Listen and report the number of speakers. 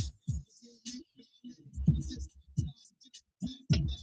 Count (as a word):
zero